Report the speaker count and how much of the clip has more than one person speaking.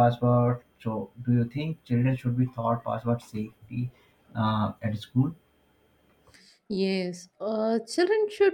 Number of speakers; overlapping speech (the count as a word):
two, no overlap